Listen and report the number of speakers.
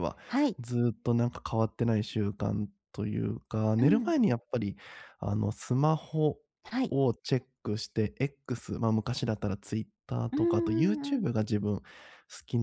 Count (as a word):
two